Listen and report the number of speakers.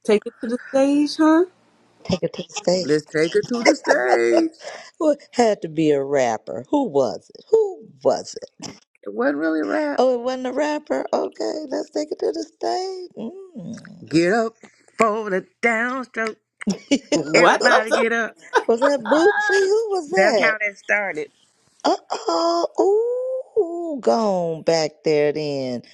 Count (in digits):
3